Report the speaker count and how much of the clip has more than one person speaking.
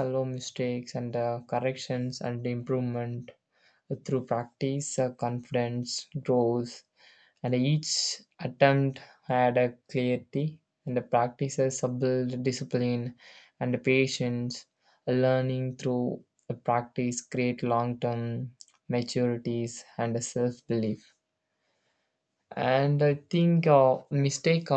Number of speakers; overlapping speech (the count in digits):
1, no overlap